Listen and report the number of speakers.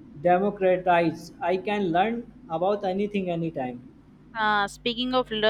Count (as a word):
two